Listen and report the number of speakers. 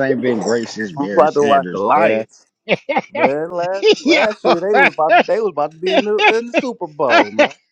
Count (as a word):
two